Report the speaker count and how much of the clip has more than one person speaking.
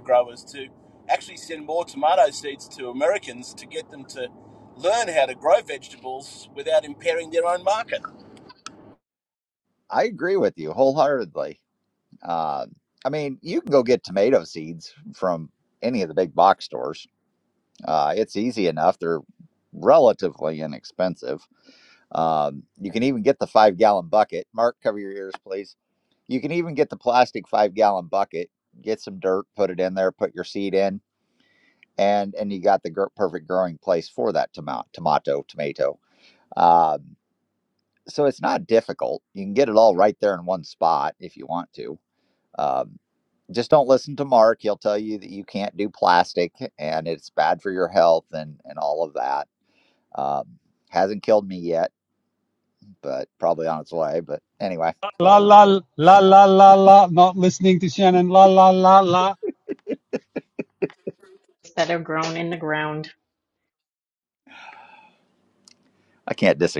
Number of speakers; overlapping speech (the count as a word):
four, no overlap